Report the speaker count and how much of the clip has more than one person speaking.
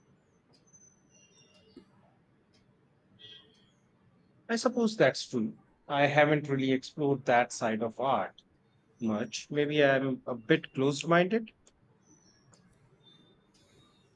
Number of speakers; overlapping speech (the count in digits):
1, no overlap